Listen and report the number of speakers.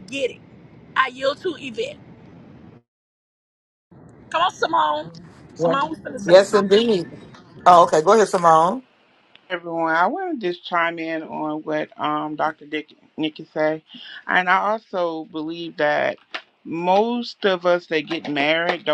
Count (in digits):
3